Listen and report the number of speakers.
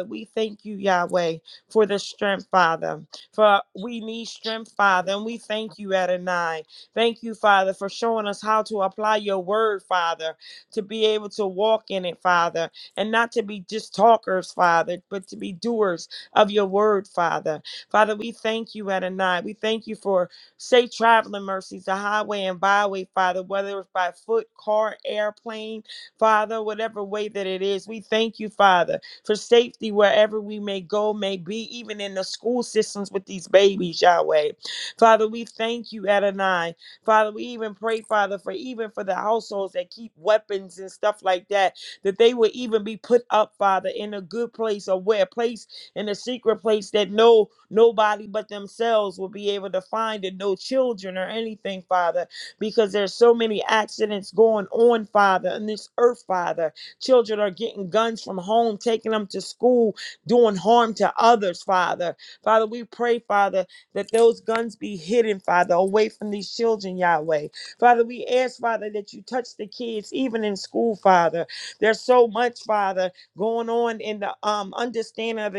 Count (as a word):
one